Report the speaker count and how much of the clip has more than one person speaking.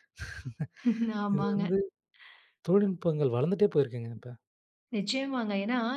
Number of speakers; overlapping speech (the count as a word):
two, about 5%